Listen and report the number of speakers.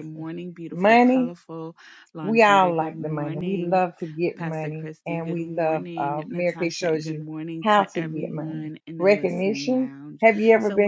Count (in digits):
2